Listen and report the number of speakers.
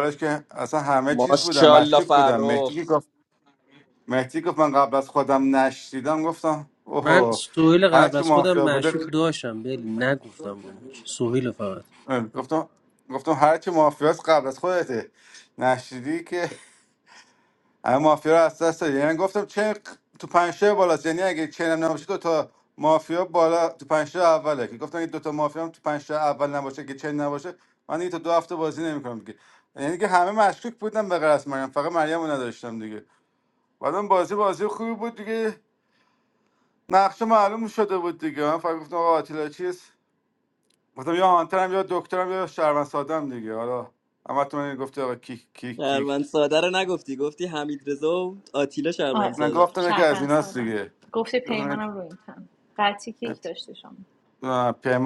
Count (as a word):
four